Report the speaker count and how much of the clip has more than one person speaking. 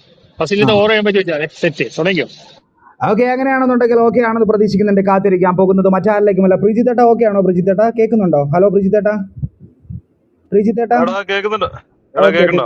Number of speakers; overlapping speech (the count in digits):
3, about 6%